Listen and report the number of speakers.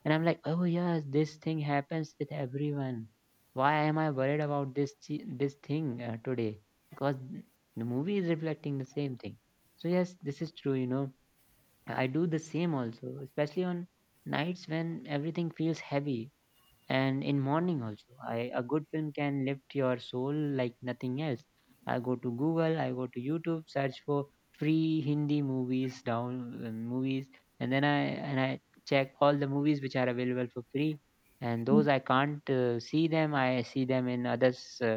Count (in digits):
1